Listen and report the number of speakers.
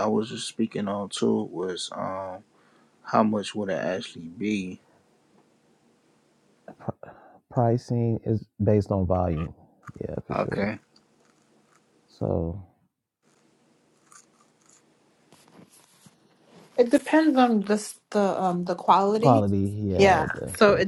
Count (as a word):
three